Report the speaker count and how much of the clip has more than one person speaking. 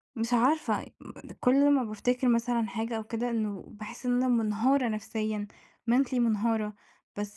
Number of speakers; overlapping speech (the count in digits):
1, no overlap